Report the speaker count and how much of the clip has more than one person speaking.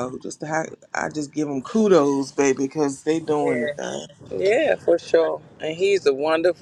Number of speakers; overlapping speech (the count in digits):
2, about 5%